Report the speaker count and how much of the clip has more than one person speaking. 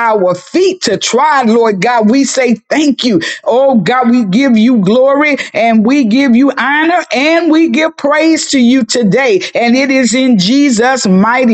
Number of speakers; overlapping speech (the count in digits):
1, no overlap